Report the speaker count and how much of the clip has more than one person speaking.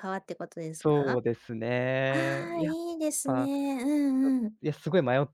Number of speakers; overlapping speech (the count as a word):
two, about 18%